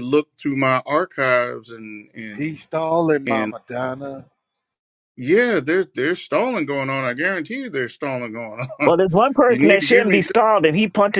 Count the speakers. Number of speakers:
3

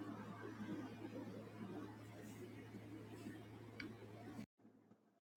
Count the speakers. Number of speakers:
0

